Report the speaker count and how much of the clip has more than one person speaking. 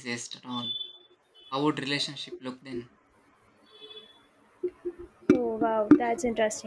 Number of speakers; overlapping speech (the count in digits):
2, no overlap